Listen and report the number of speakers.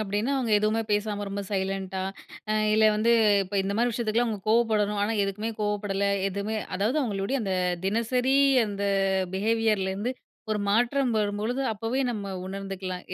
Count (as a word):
one